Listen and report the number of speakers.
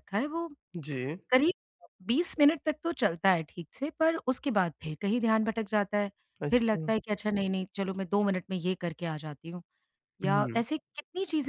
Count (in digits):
2